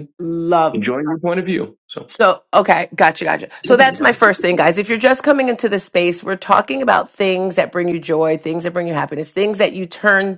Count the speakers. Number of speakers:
2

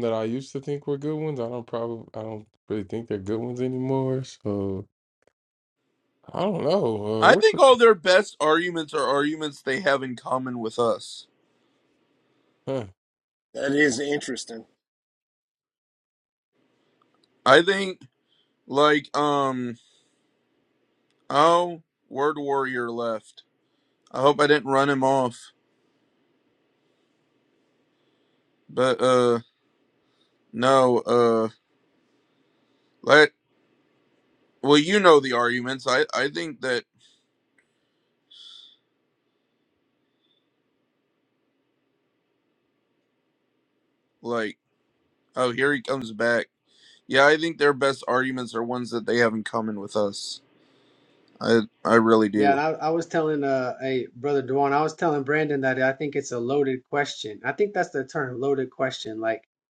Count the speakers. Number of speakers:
4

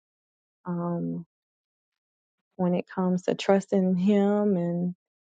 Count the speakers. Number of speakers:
1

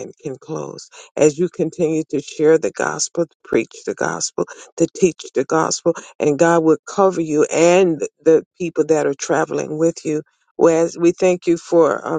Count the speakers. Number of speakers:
1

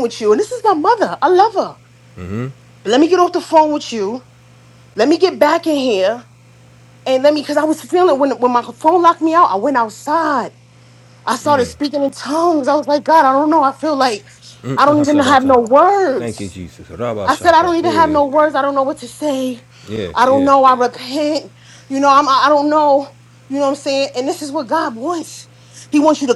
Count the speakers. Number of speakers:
2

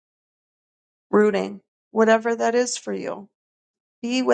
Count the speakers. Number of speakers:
1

